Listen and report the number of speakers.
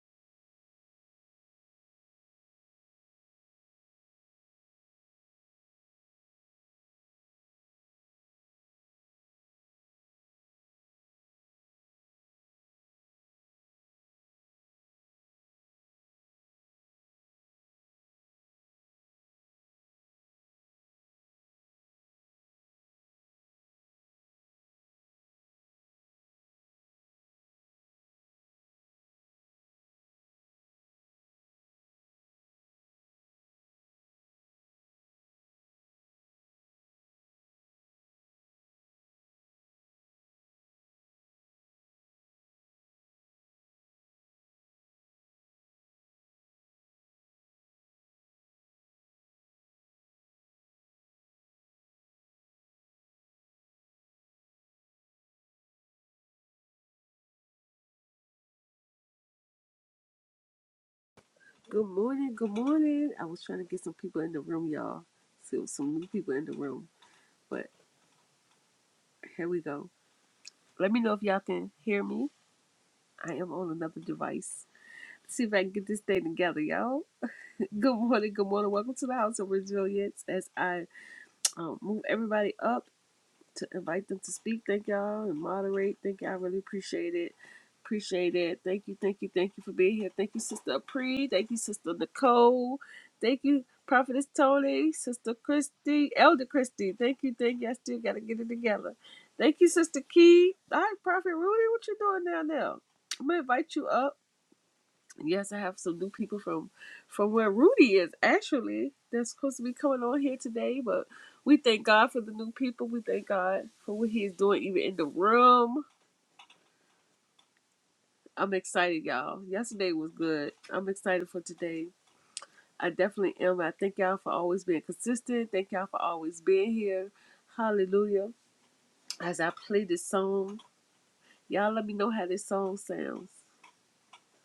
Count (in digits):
1